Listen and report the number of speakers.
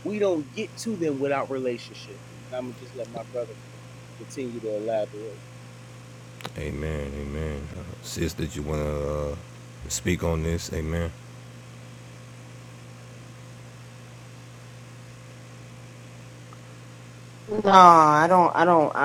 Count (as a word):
three